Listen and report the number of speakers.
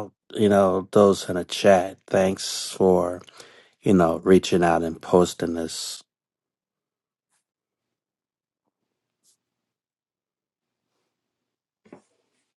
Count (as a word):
one